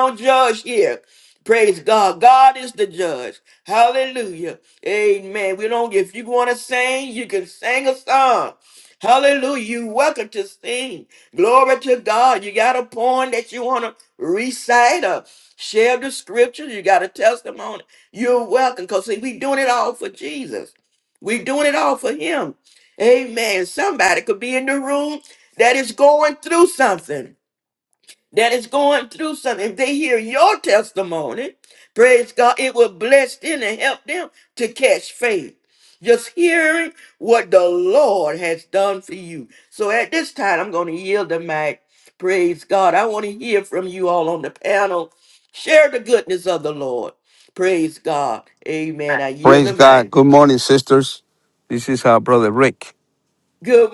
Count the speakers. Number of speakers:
two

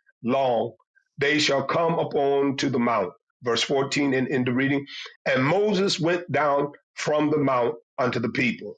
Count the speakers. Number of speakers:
one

